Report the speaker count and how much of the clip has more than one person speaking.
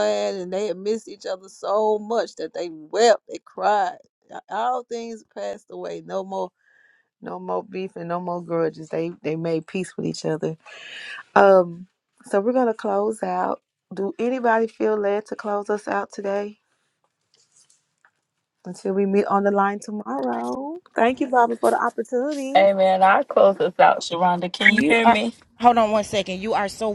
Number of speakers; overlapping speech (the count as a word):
three, about 2%